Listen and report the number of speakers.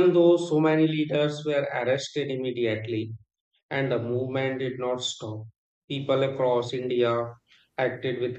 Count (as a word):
one